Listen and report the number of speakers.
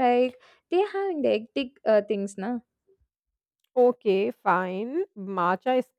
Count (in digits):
2